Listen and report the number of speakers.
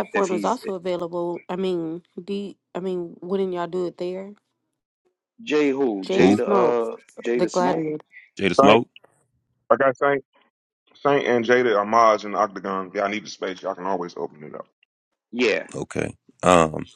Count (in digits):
4